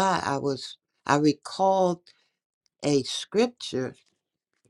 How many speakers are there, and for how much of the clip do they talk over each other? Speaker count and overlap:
1, no overlap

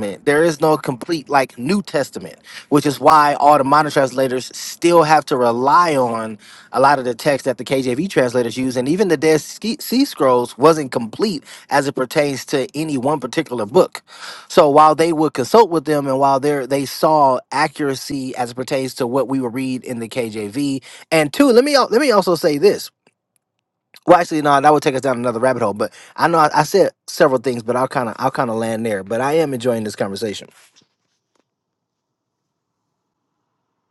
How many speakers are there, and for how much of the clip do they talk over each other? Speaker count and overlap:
1, no overlap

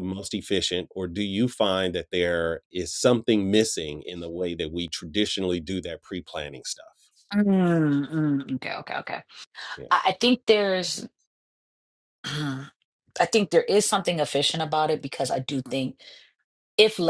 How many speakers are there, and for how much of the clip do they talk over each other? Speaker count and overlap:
2, no overlap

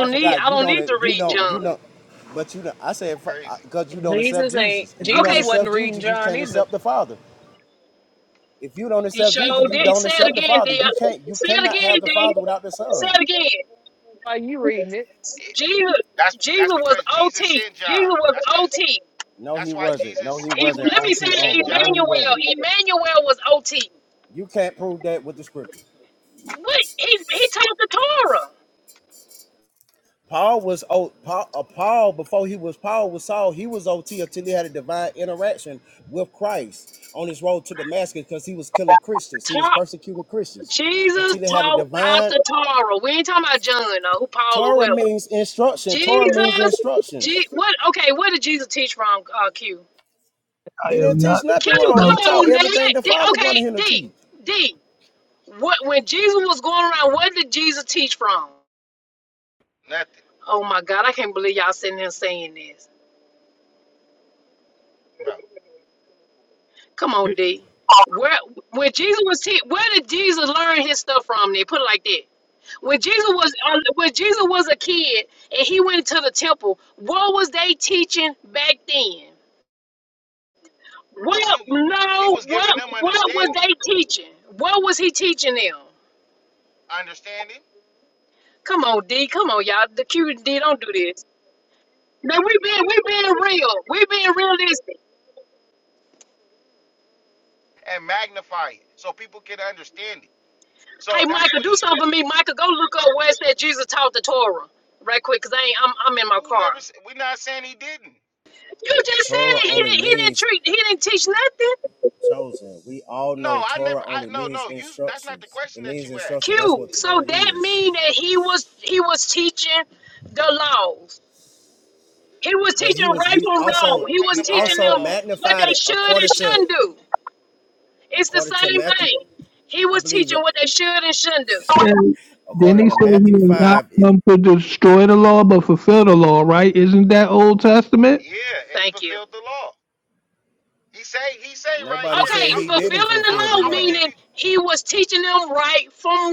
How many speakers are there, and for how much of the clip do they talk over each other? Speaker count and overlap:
5, about 25%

